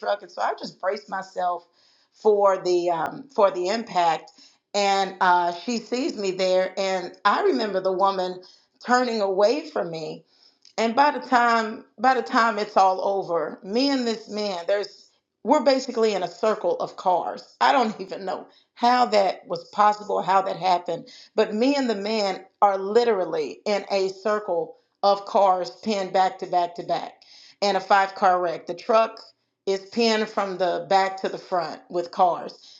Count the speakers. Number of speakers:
one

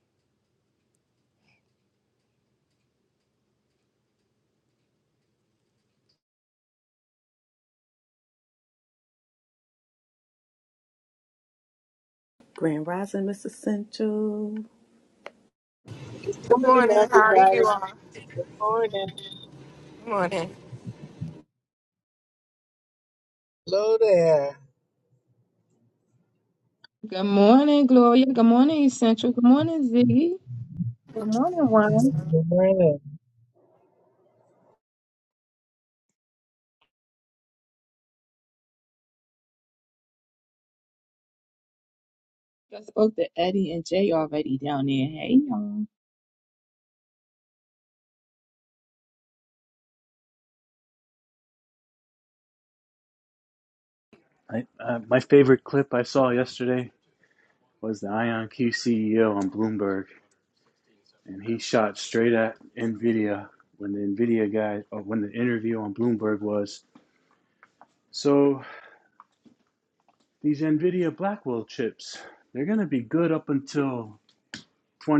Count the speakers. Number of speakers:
five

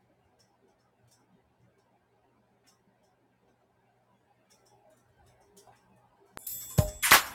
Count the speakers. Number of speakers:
zero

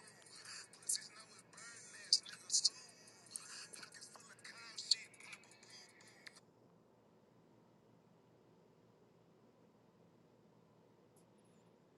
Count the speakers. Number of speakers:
zero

